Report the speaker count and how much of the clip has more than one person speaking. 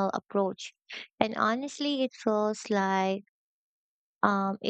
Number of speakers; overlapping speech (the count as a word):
one, no overlap